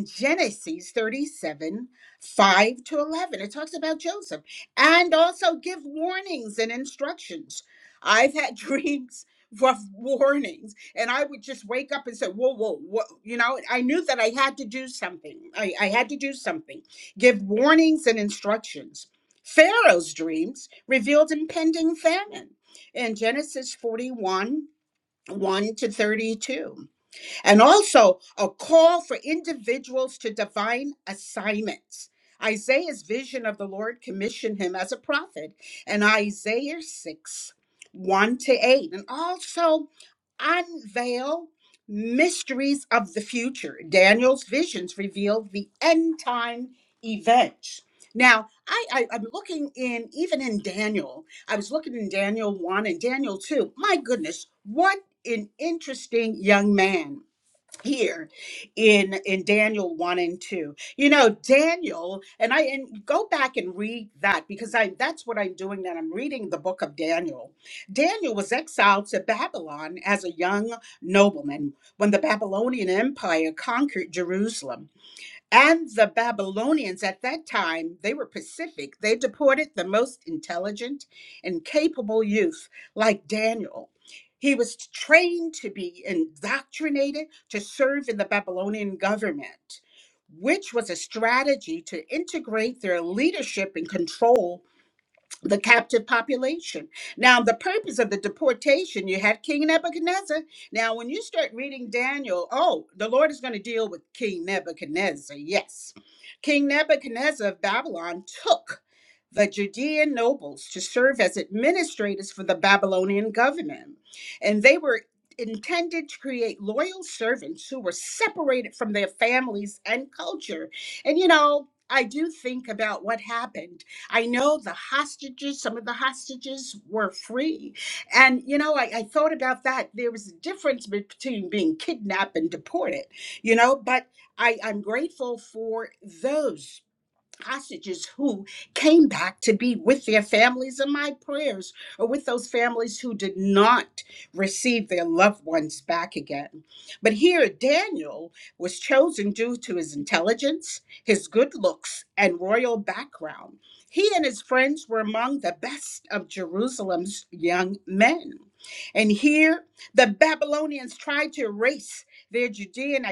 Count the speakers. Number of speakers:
1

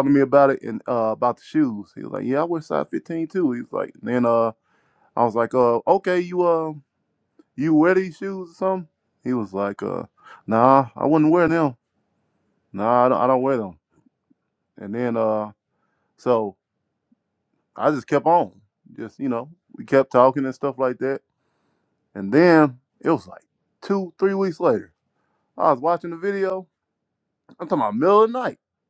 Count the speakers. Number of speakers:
1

